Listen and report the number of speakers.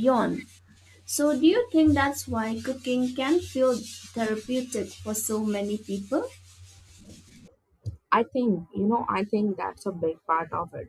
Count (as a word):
two